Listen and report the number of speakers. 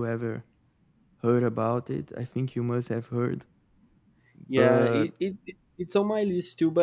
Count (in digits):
2